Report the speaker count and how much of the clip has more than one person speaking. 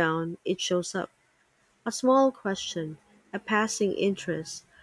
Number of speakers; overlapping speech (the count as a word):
one, no overlap